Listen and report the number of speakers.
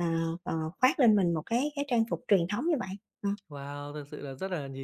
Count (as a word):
two